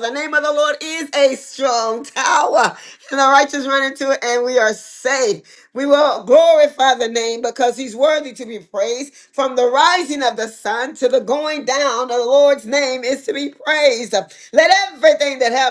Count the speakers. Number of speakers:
one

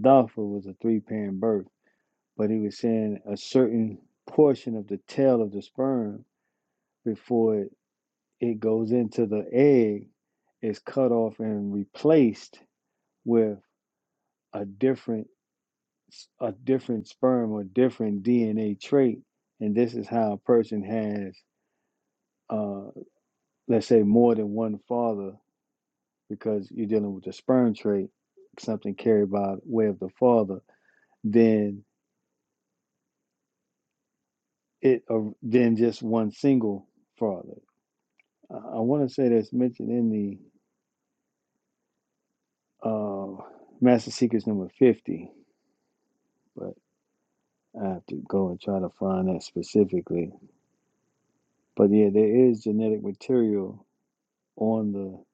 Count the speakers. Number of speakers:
one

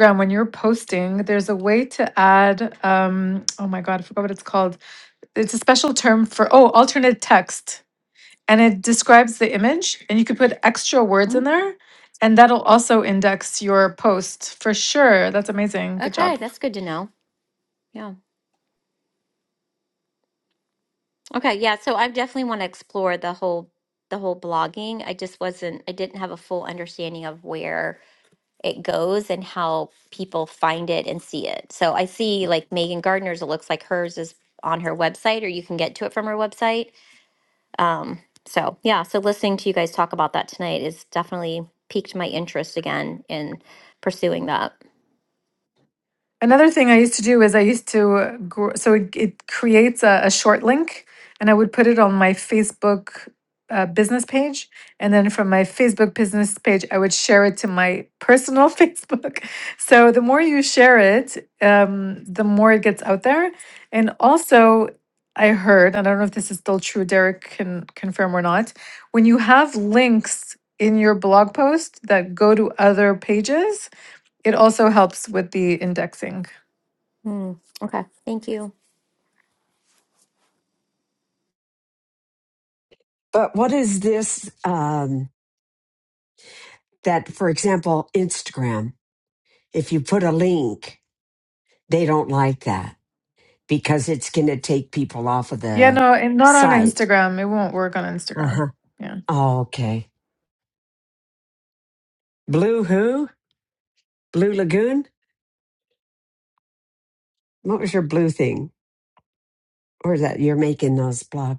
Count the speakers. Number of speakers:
three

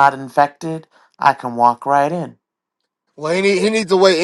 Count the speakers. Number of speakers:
two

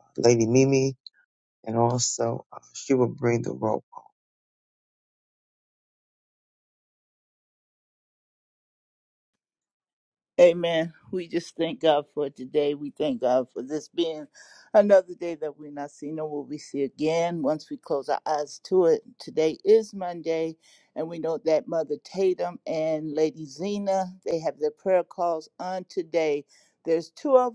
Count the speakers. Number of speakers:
two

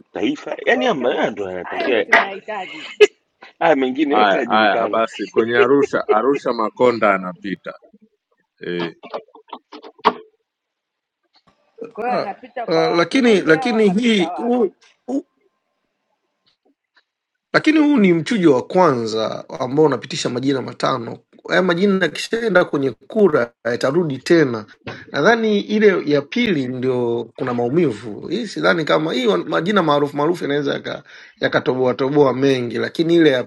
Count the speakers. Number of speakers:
four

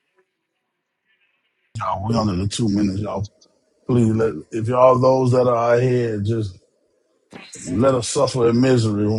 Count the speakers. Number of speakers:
one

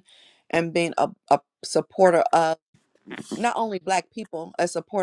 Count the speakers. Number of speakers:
one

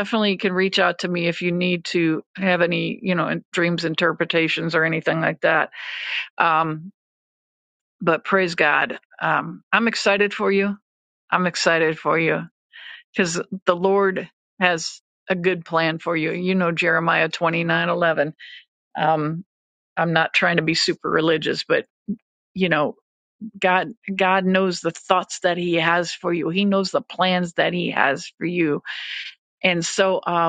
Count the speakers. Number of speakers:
one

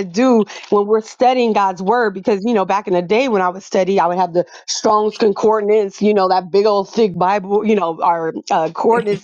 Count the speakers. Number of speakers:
one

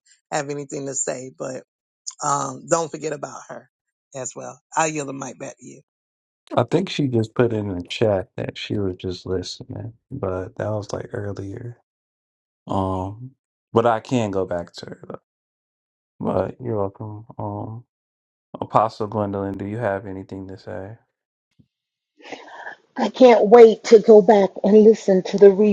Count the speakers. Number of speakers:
three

